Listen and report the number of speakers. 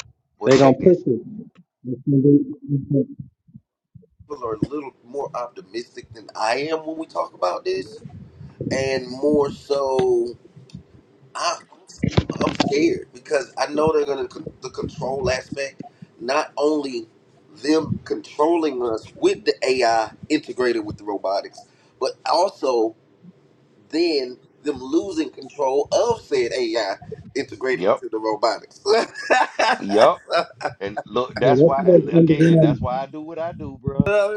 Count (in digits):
3